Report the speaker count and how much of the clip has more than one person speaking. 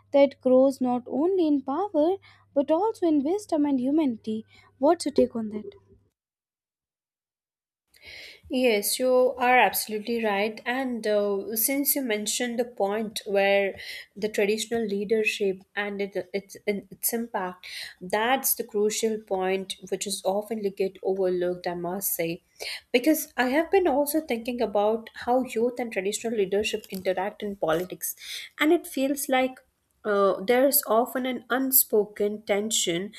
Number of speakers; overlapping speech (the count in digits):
2, no overlap